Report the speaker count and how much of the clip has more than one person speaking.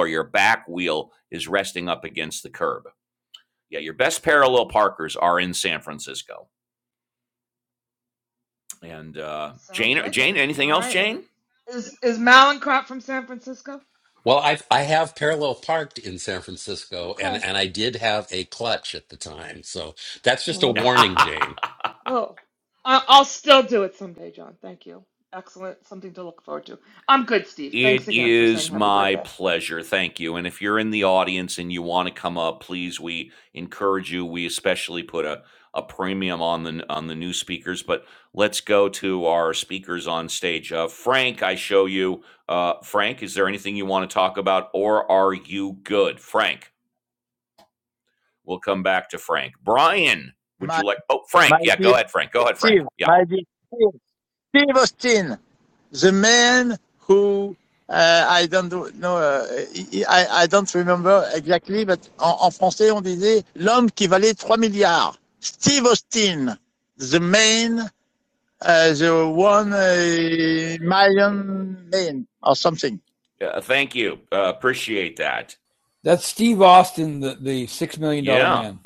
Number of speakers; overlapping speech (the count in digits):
5, about 6%